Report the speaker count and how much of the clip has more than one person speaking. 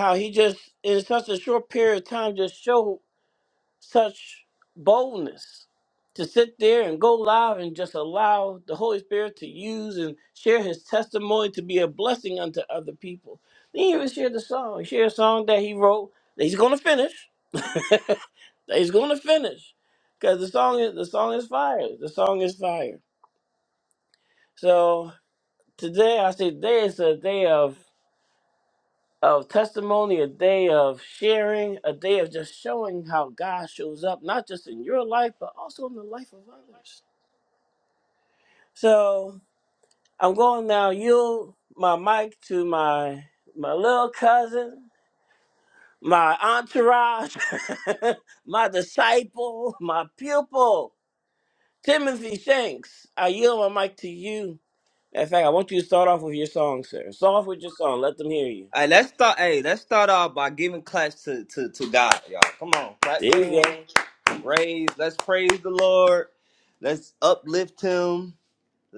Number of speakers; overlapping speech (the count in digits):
2, about 1%